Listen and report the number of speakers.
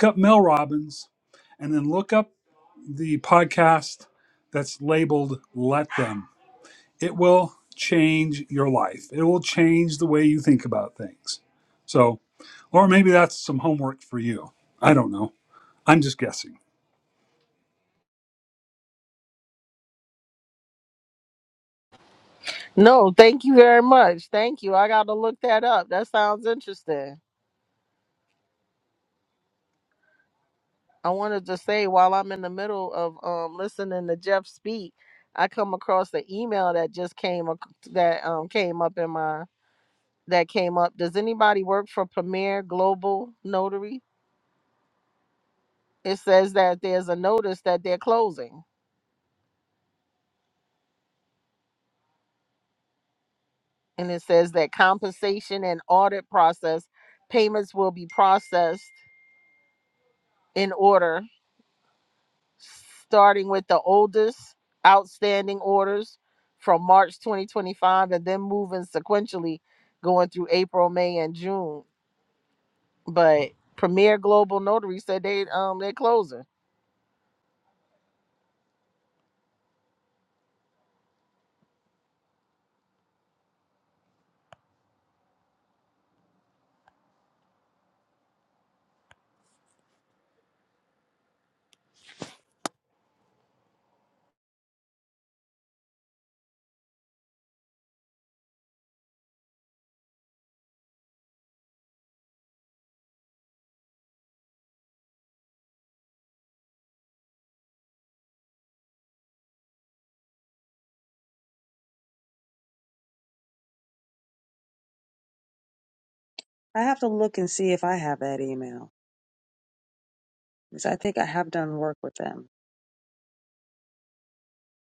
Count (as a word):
three